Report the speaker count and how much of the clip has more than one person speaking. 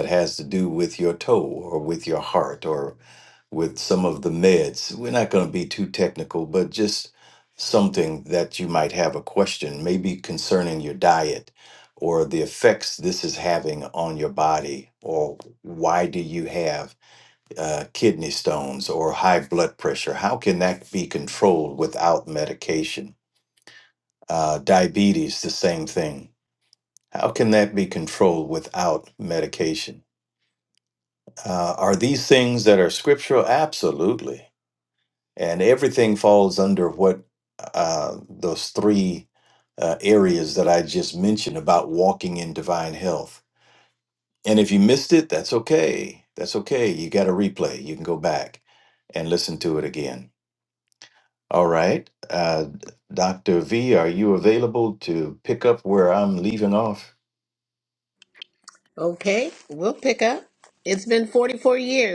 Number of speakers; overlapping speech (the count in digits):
2, no overlap